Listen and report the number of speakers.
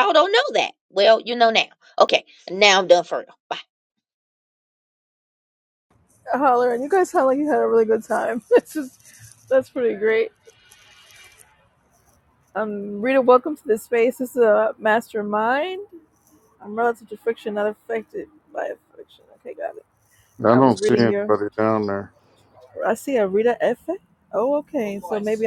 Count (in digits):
3